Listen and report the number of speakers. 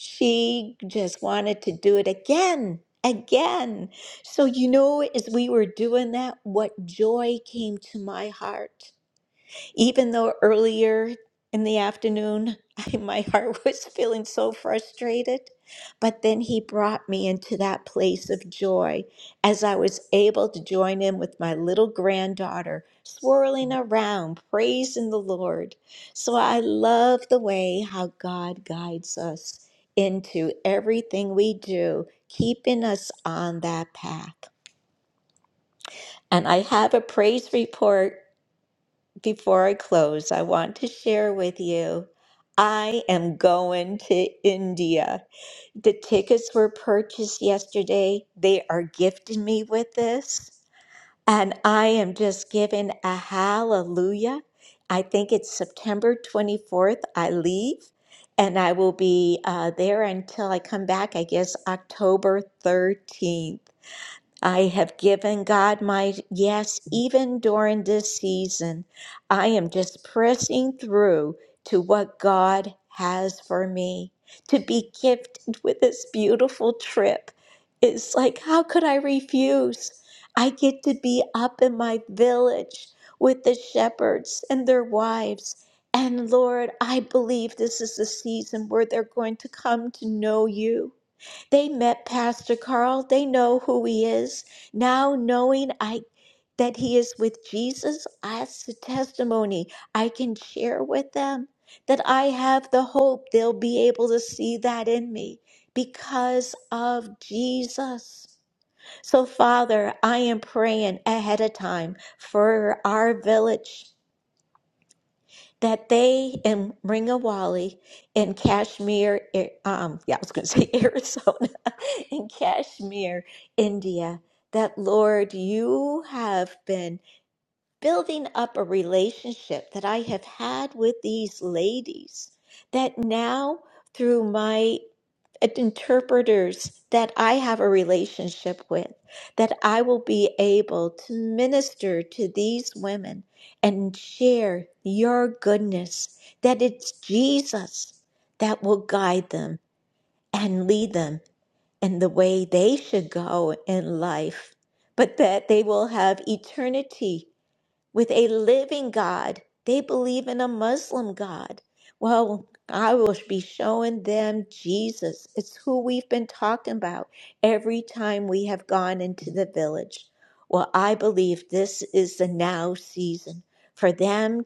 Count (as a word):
one